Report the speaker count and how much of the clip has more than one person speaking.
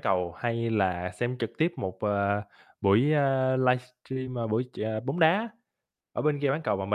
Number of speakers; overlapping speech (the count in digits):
1, no overlap